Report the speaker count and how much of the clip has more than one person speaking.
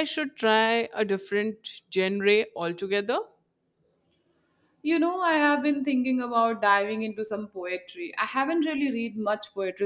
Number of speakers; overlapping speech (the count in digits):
2, no overlap